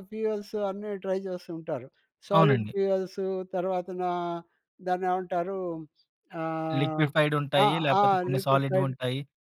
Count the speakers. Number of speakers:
2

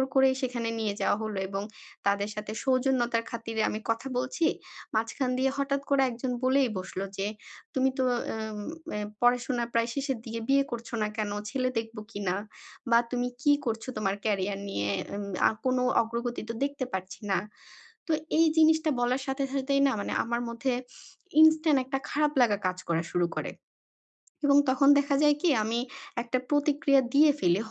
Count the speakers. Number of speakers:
1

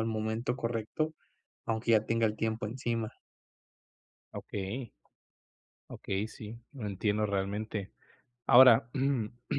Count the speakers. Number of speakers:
2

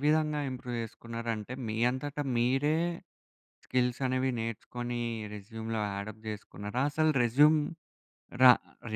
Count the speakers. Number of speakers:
1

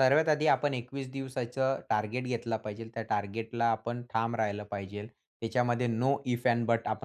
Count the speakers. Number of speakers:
1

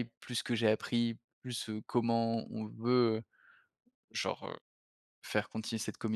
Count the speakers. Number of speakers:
1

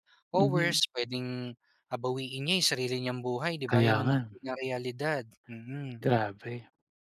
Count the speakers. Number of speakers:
2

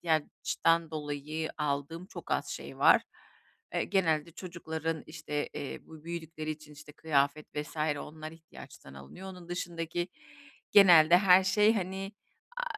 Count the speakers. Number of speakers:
1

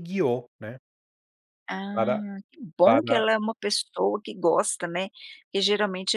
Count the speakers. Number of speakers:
2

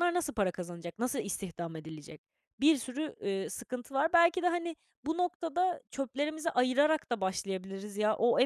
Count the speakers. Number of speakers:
1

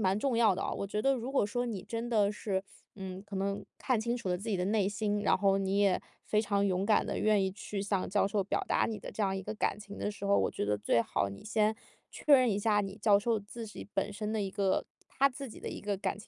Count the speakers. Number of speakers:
1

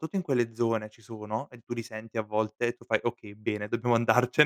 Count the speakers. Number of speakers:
1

